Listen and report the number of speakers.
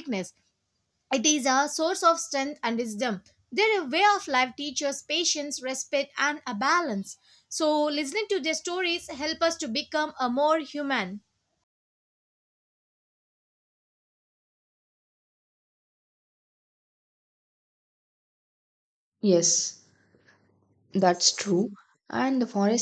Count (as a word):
two